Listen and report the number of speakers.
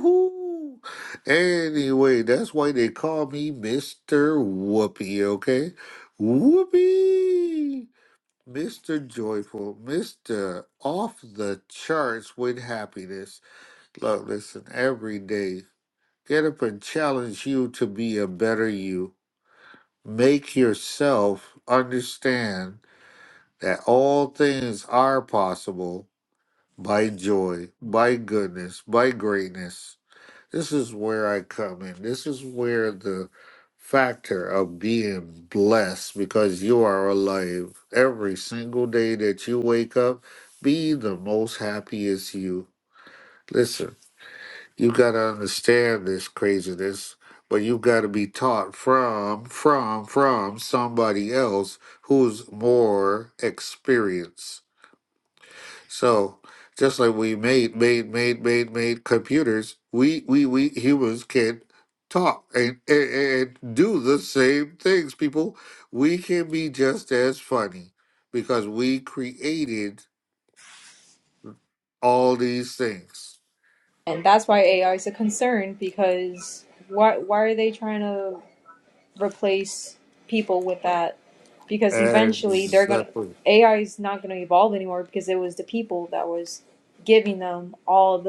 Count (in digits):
2